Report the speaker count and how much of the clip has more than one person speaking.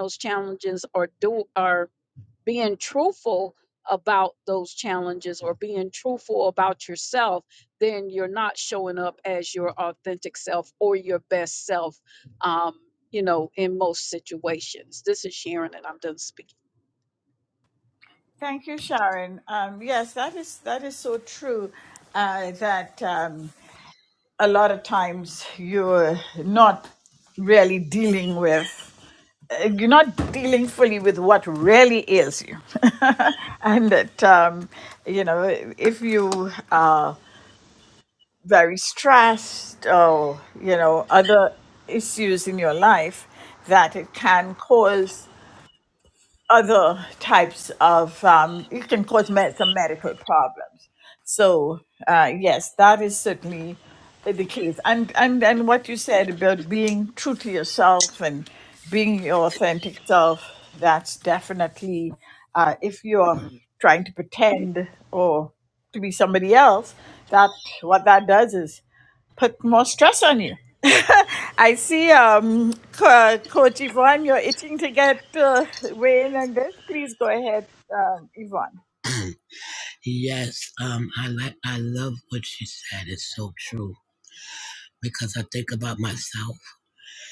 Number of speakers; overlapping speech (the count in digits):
3, no overlap